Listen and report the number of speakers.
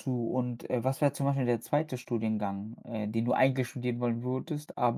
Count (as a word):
one